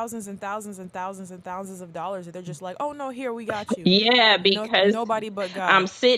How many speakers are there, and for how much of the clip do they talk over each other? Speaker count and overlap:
2, about 14%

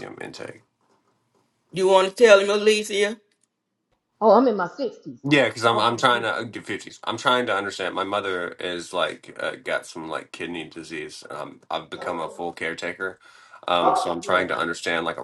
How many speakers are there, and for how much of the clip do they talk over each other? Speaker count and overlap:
3, about 6%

